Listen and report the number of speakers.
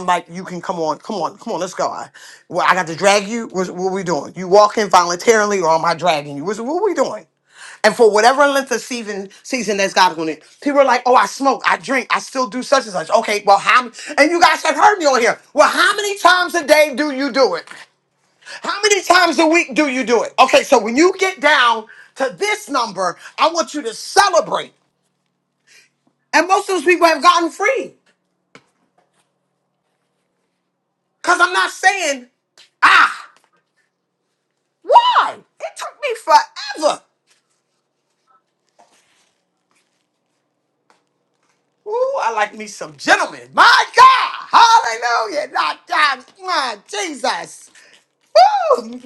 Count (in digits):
1